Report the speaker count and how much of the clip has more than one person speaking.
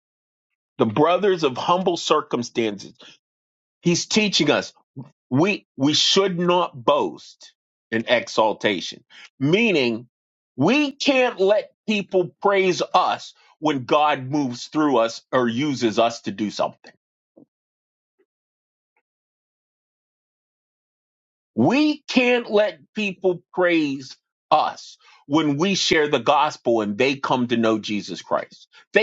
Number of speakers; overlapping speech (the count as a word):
one, no overlap